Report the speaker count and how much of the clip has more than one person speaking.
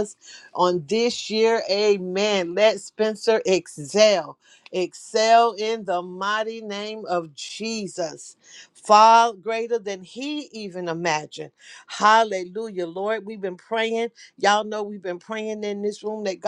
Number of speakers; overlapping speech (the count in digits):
1, no overlap